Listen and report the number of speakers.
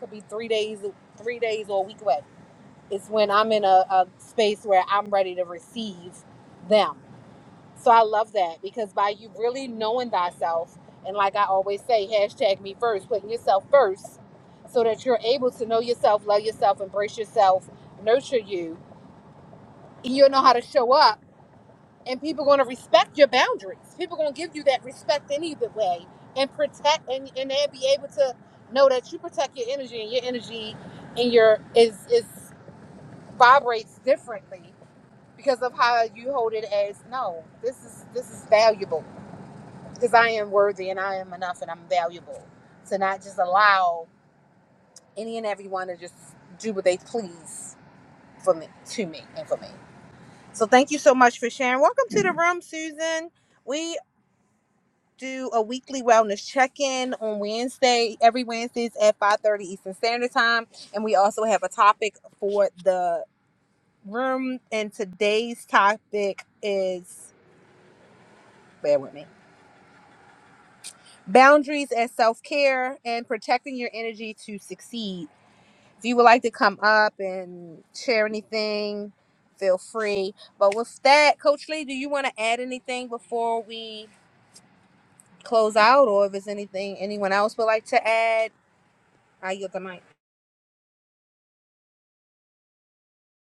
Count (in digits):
1